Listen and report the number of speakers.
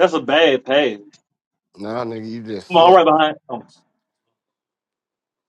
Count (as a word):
two